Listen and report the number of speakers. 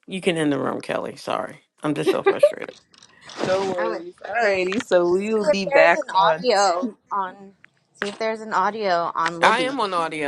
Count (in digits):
3